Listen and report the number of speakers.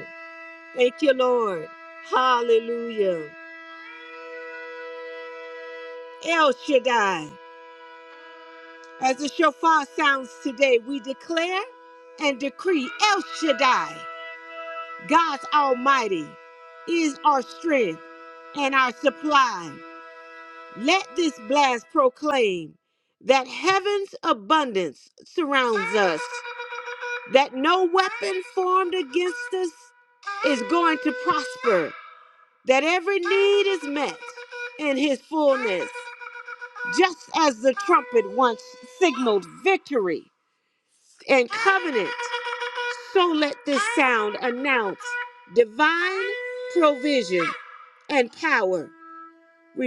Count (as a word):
one